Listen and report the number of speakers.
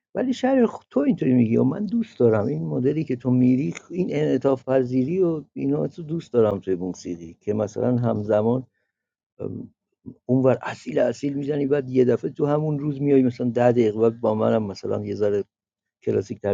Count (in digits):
1